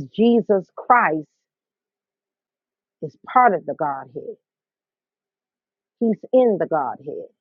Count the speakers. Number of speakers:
one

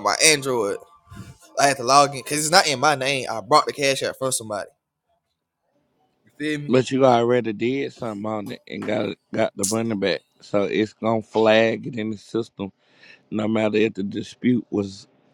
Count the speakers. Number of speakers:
two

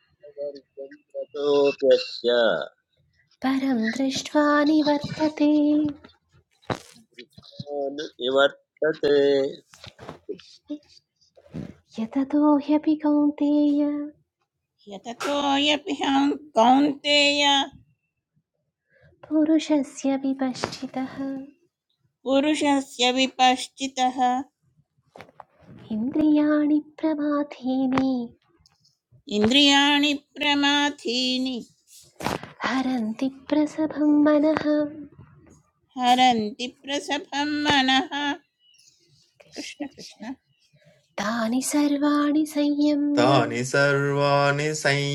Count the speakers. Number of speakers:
four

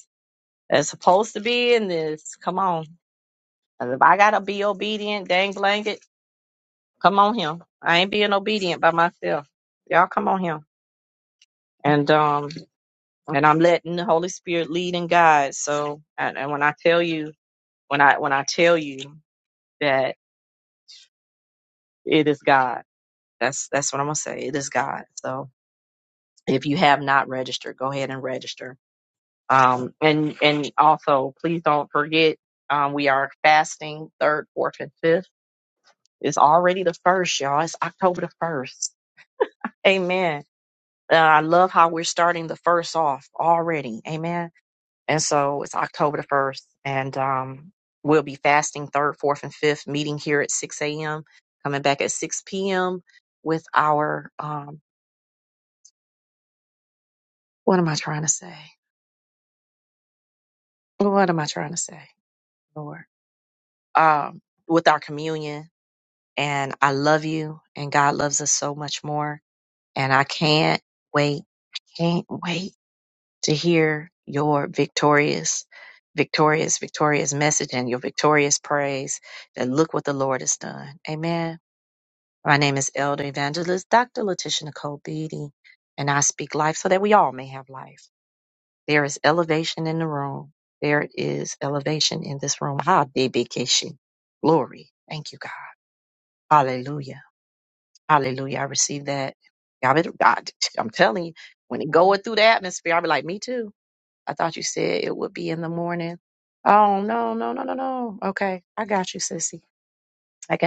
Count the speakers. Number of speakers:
one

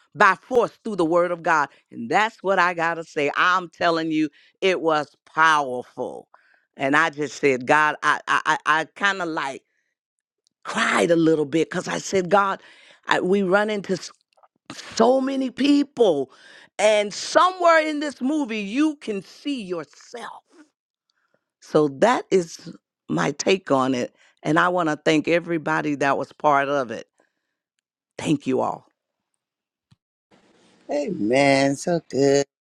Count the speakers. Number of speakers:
two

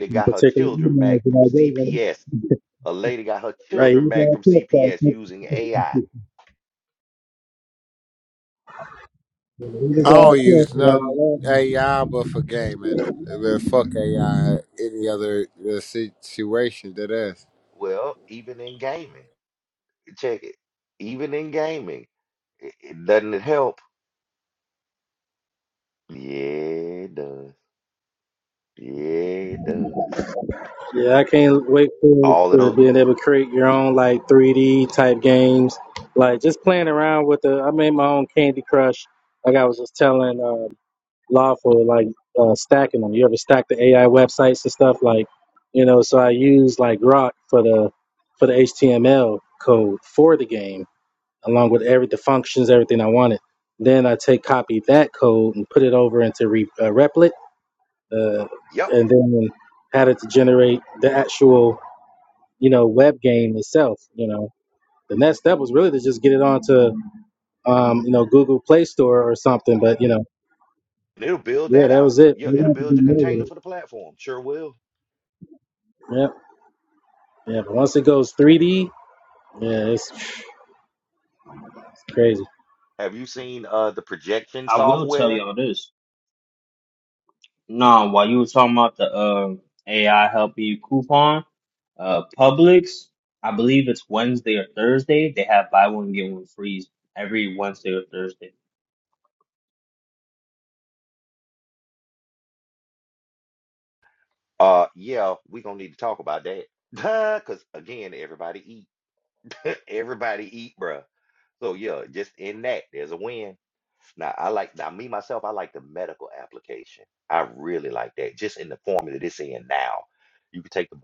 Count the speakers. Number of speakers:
four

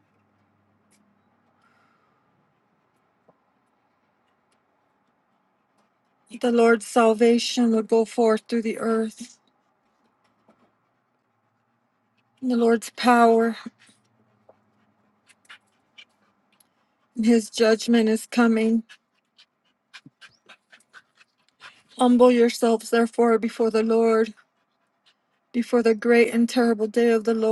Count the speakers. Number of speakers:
one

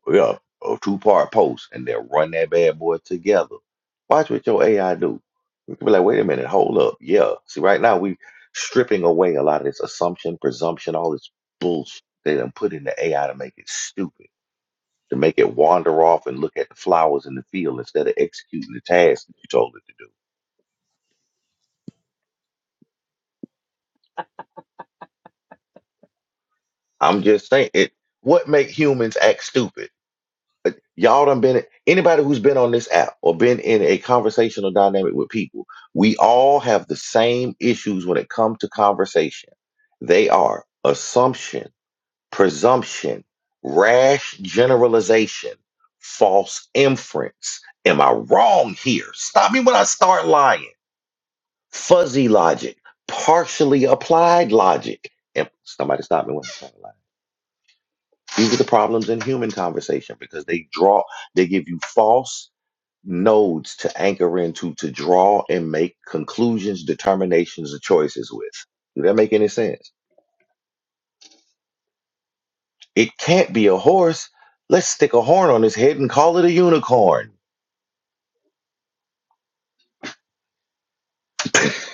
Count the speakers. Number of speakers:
one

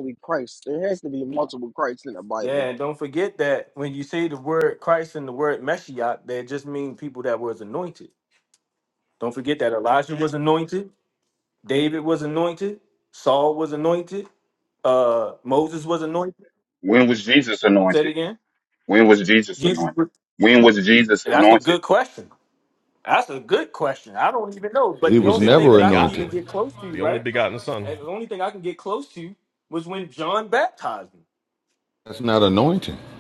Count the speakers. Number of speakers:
five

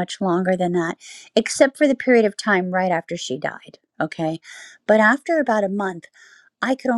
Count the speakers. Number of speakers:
one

